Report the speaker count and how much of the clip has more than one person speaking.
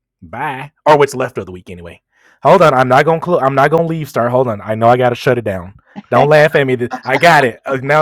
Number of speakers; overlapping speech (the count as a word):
one, no overlap